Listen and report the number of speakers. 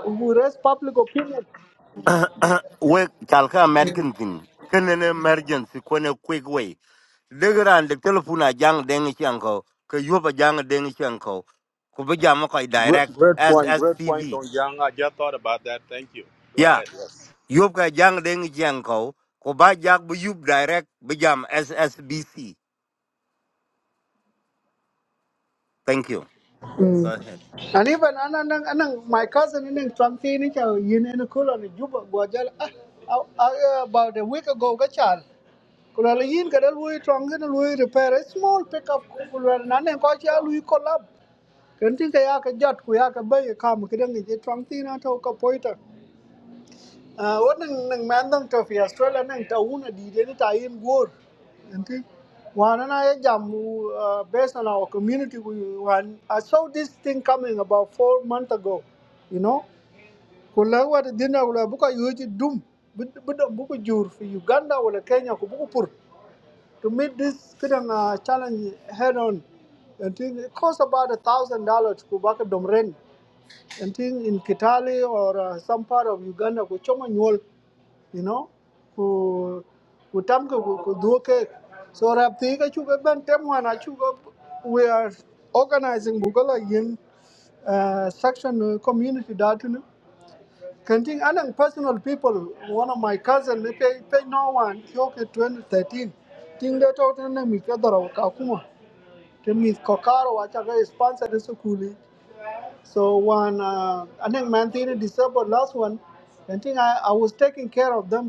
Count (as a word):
three